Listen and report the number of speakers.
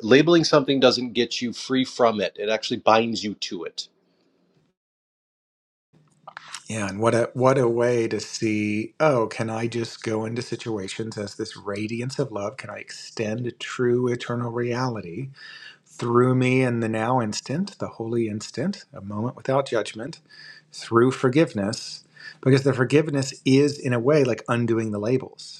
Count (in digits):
2